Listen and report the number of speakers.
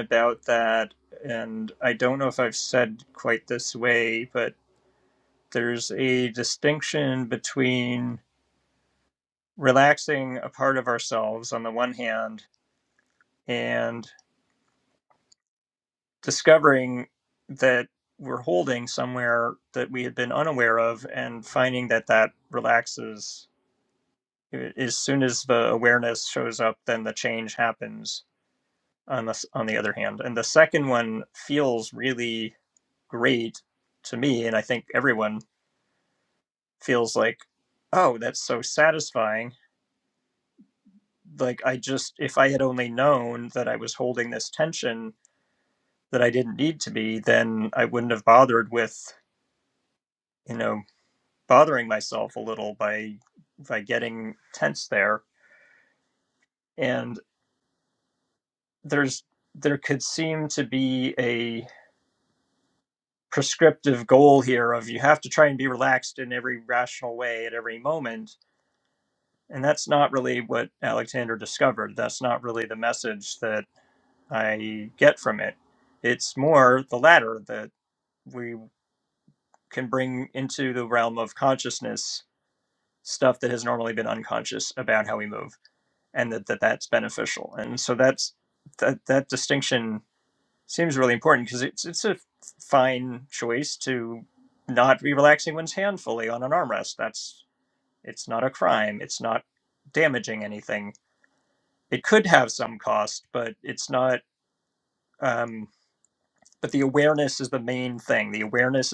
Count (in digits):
1